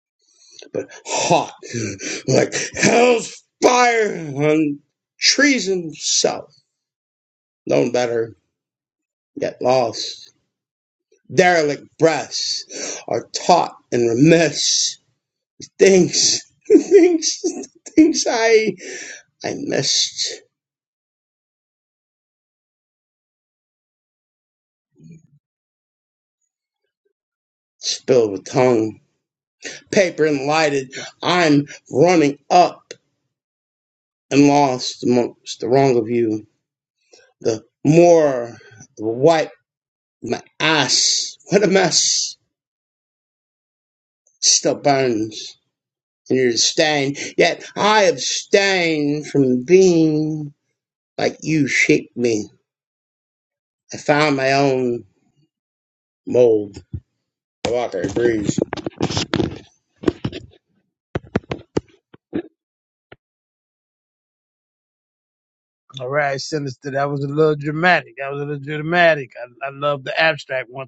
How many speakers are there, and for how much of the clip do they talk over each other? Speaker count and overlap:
two, no overlap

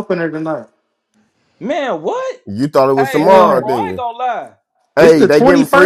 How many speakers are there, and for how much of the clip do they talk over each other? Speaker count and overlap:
three, about 32%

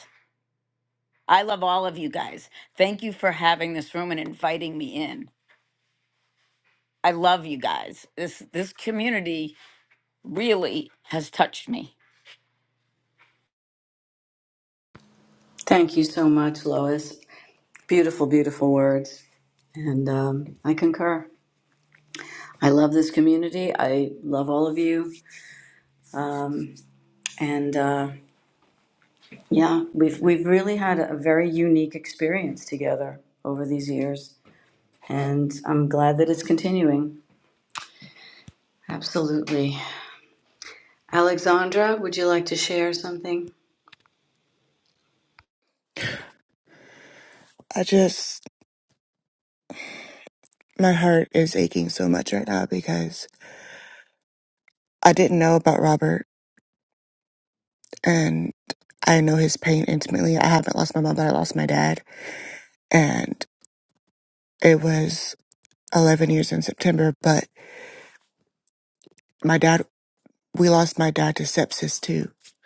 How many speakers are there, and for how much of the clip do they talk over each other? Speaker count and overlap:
three, no overlap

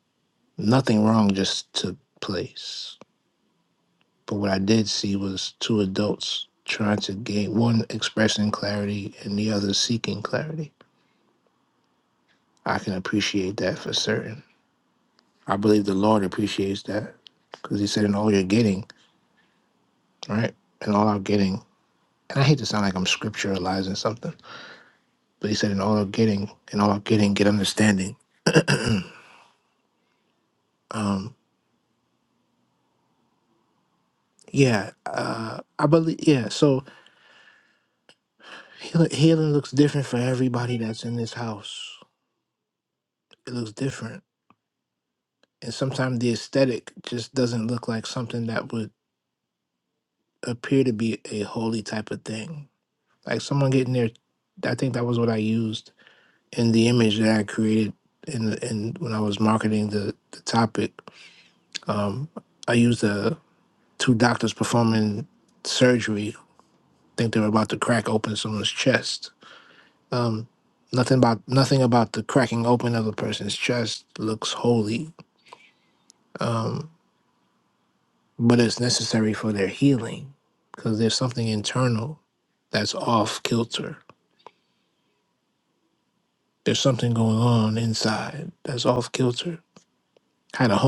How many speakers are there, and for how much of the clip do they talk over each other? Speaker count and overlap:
one, no overlap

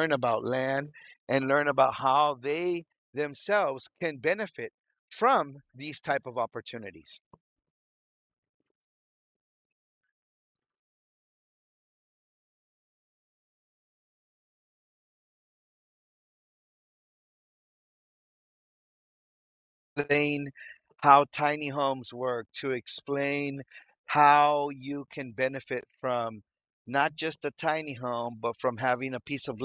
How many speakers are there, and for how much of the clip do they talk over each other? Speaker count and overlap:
one, no overlap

